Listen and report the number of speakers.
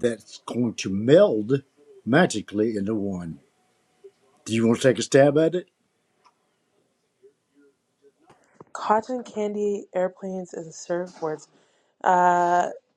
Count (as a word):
two